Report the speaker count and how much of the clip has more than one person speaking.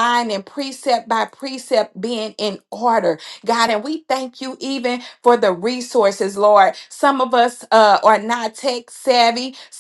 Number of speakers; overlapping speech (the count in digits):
1, no overlap